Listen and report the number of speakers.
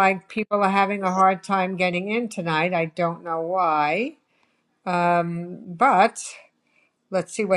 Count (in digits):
1